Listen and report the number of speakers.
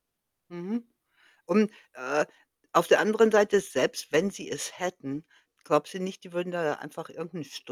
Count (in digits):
1